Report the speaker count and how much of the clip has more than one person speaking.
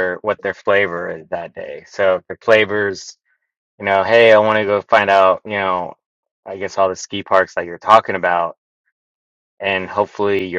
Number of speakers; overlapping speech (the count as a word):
one, no overlap